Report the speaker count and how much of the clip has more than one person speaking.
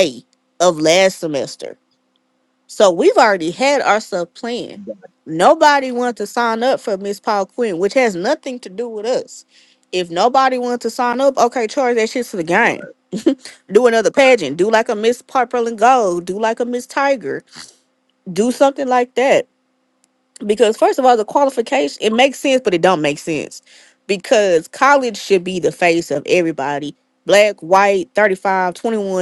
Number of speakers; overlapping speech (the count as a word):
one, no overlap